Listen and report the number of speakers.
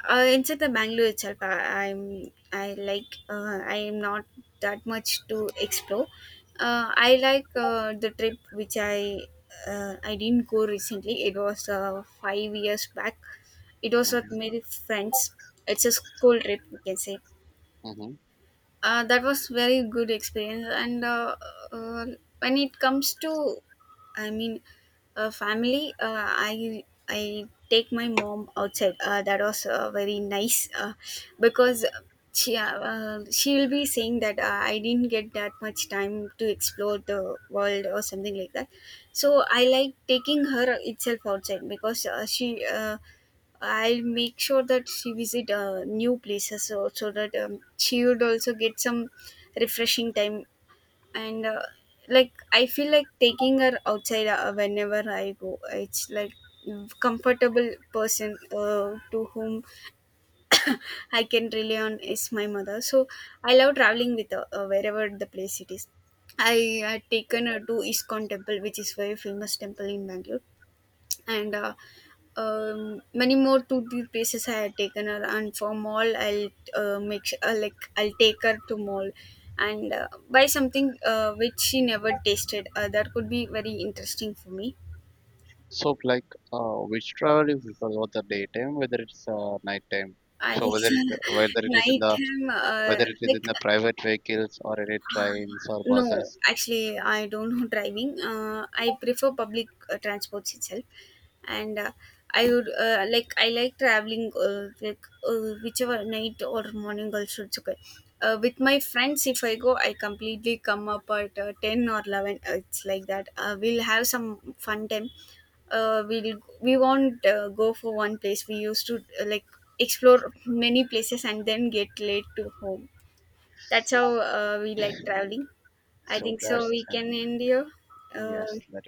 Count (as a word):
two